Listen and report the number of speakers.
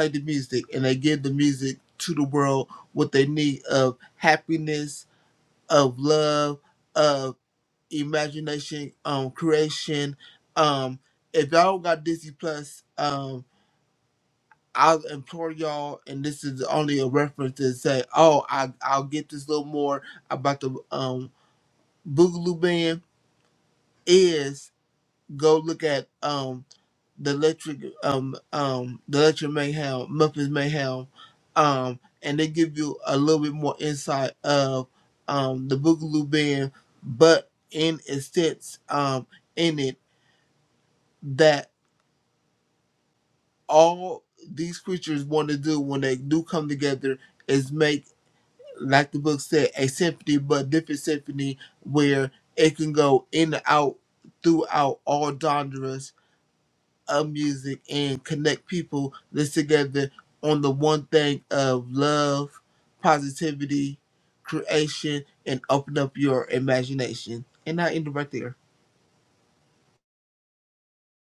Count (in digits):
1